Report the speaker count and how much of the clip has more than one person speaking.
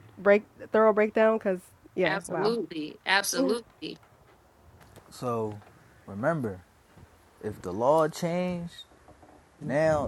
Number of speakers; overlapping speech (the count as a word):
three, about 5%